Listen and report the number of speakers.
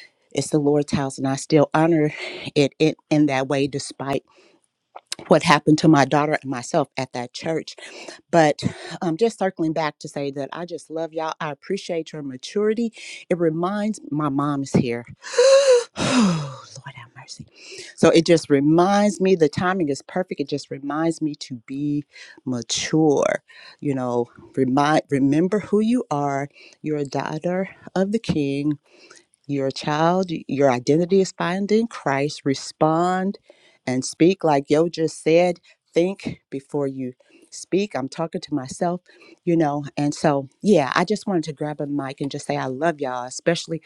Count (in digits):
1